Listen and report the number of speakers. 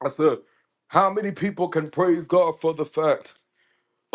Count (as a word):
one